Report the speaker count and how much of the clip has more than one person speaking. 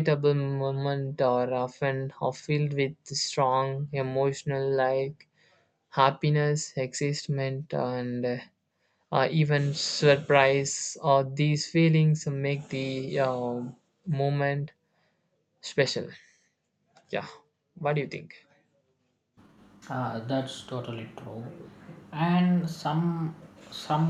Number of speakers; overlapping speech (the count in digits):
2, no overlap